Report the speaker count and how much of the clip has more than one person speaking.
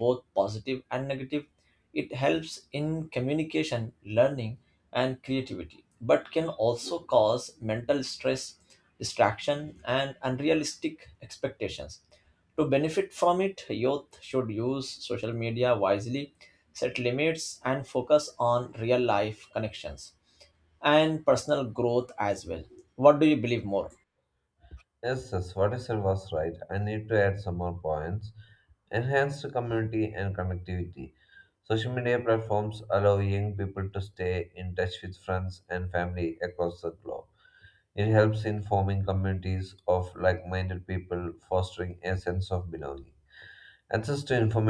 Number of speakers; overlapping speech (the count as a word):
two, no overlap